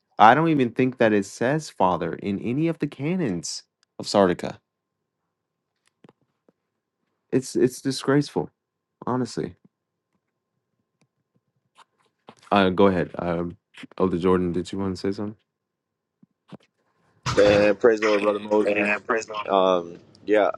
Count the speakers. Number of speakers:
2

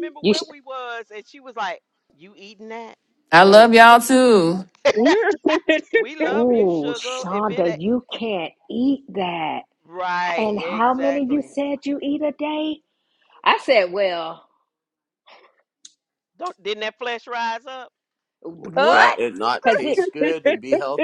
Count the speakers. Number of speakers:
5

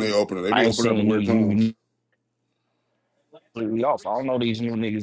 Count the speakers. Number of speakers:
2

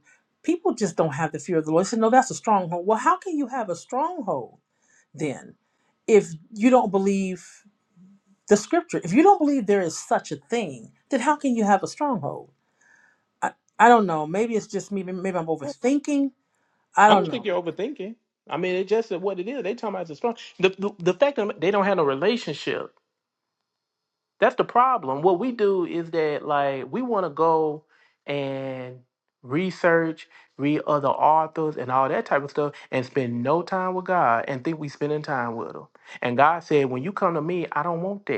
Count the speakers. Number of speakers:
2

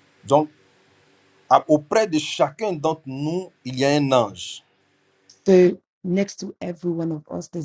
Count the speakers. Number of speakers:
2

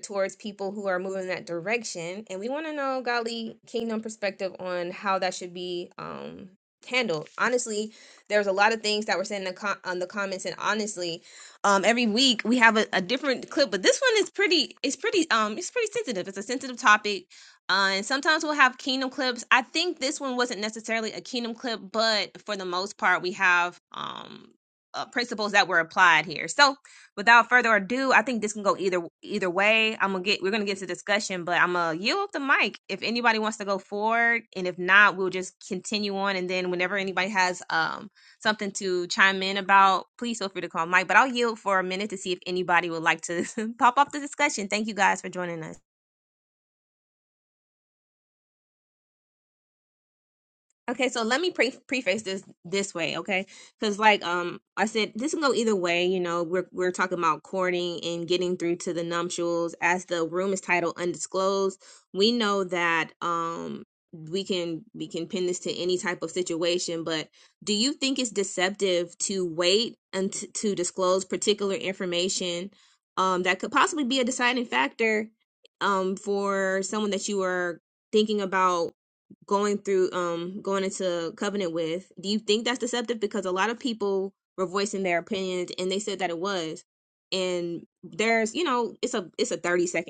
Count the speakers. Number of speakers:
1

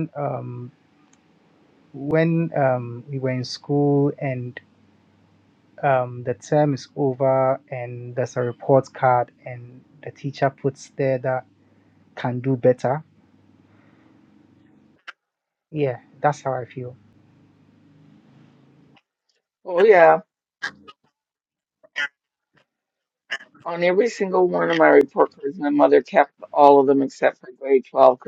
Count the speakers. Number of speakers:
2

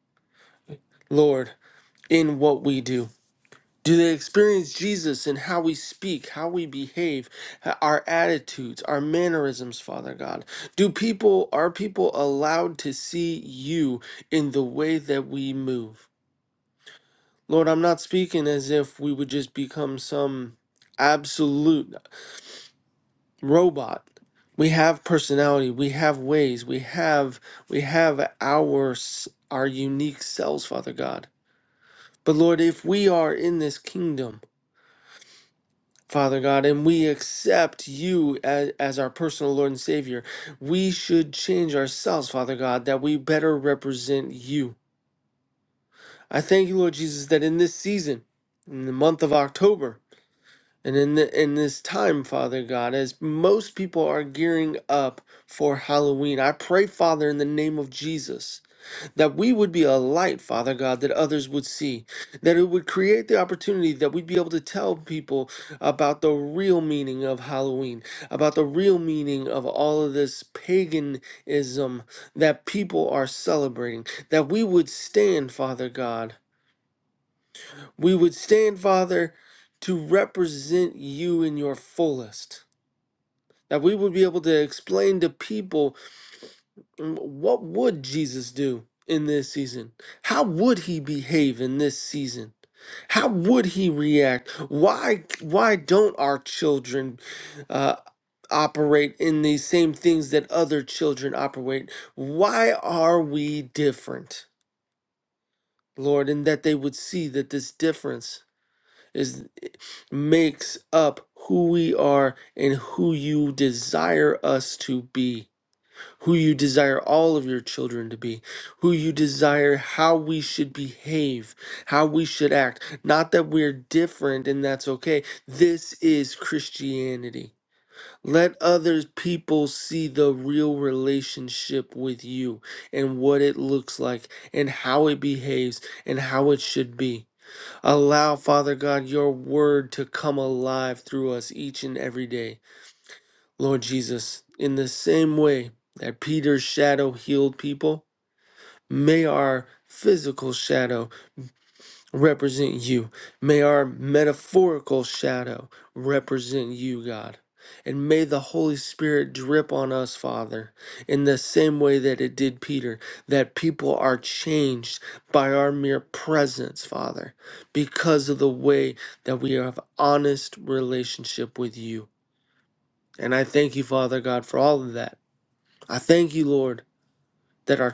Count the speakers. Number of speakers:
1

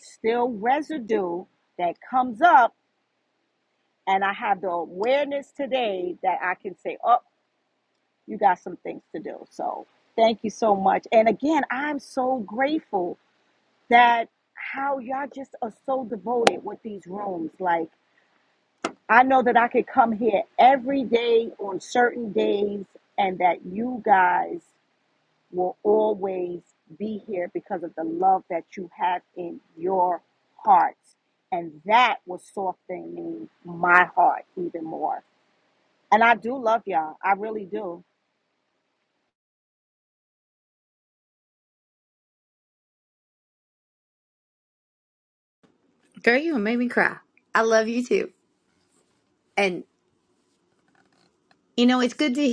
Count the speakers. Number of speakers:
2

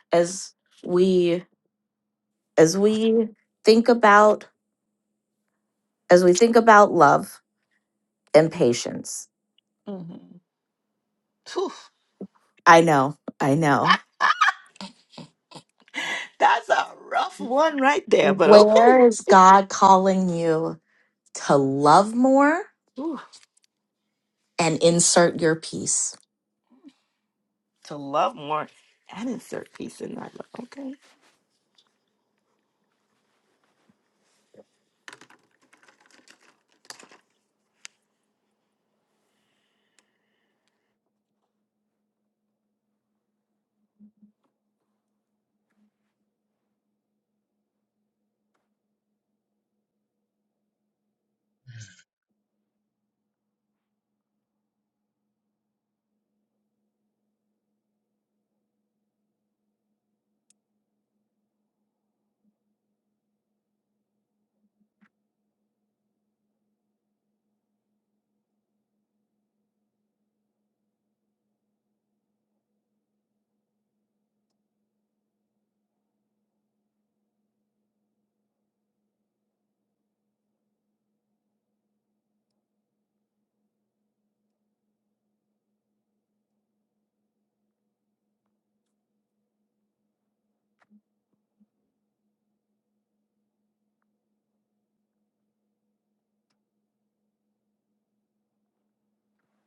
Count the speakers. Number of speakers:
2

